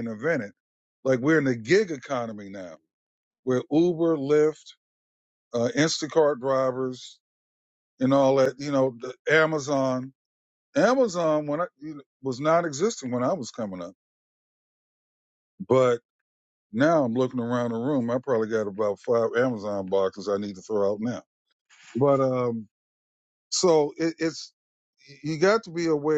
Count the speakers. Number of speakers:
1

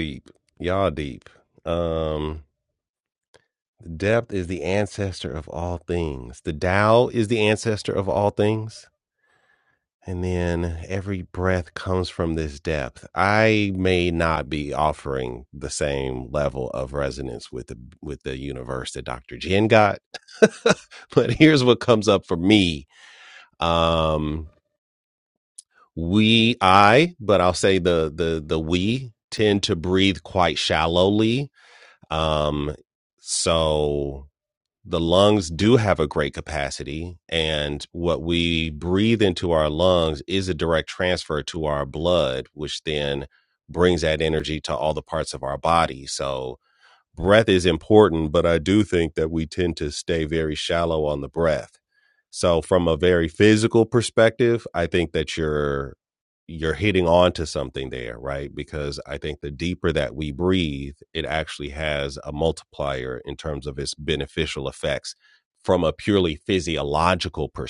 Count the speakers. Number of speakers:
1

